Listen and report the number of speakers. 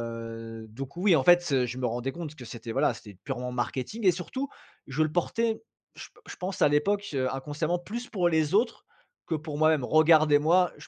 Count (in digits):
1